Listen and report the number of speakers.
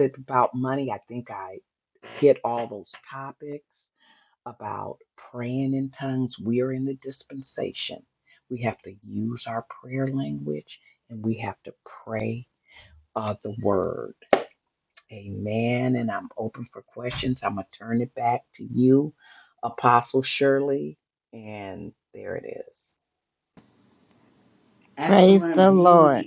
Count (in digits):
2